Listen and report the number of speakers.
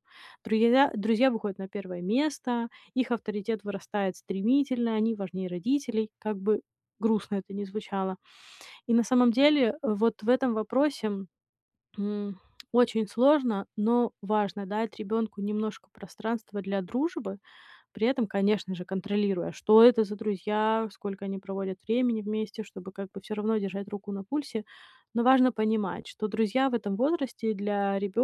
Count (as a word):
one